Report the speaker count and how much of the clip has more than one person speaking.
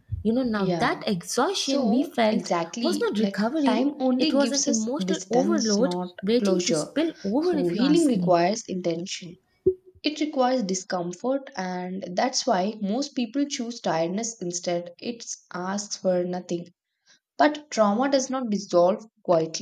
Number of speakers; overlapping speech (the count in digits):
2, about 30%